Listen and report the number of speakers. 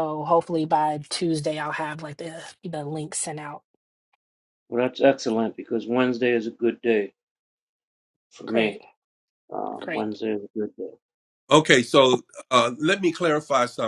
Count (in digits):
3